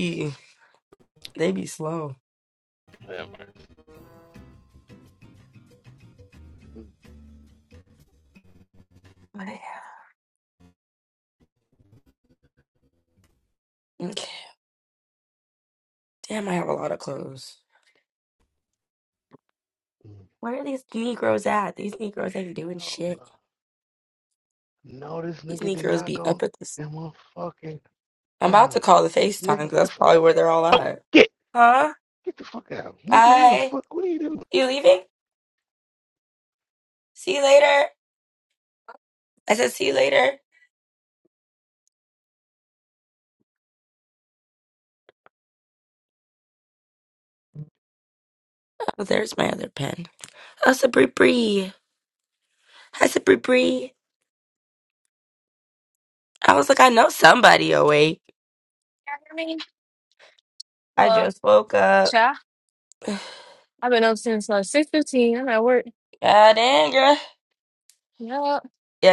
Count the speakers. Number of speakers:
3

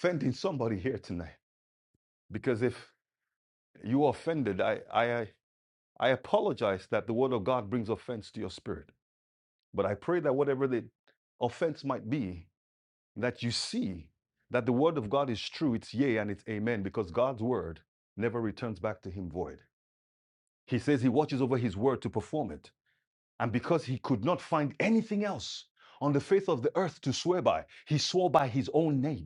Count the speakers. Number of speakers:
1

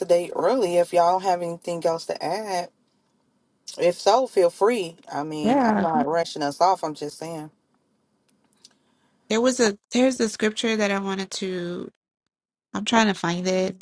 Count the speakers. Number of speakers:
2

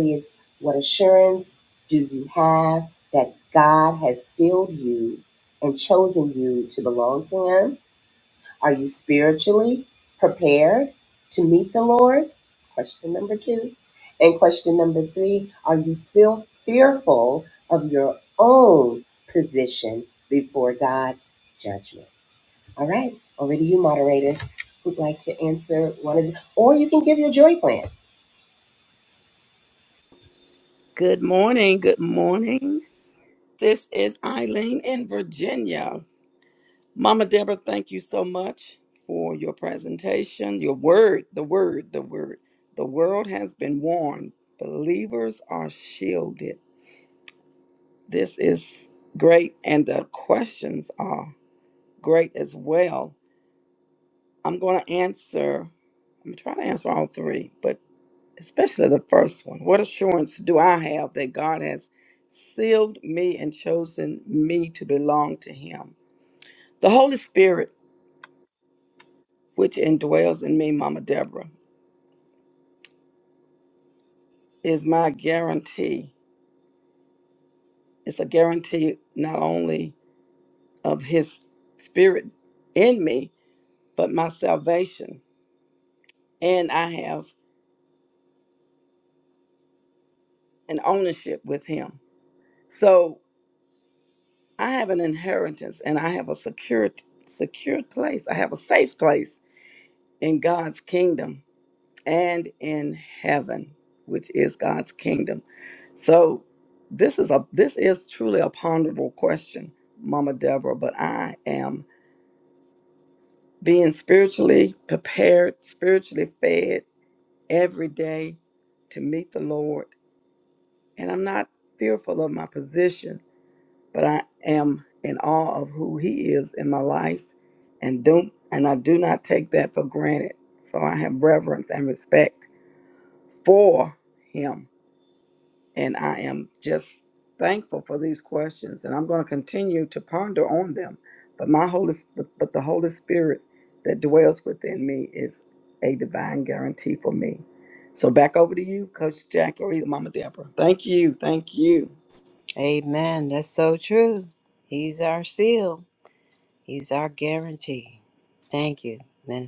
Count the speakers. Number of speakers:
3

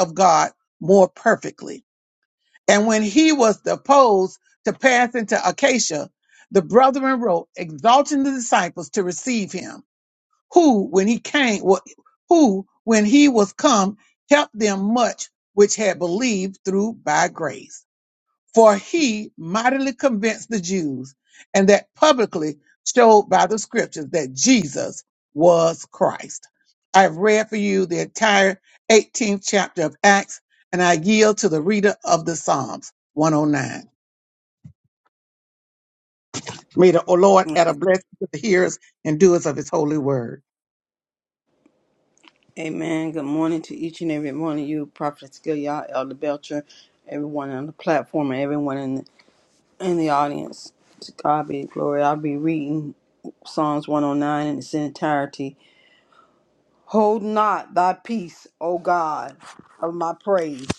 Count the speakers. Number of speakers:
2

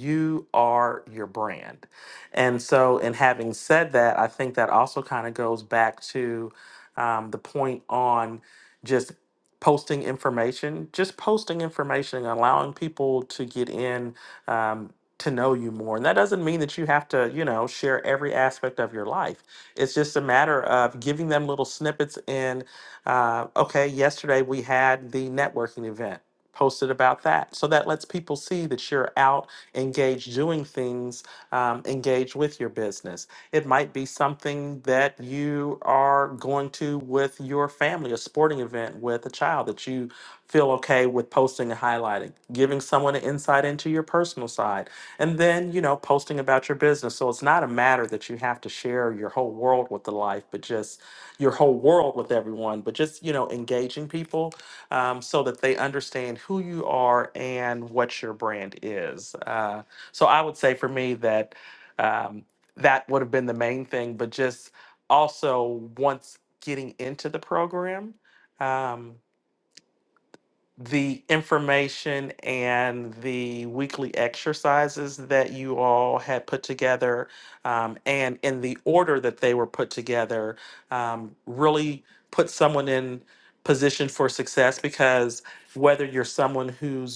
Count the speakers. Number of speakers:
1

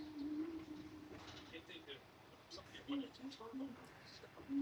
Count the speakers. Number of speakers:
0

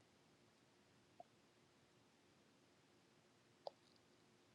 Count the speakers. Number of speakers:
0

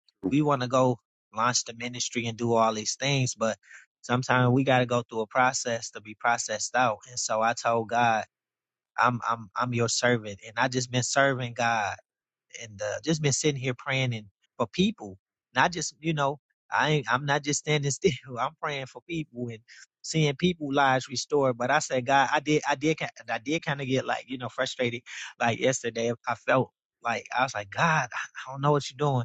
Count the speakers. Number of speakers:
1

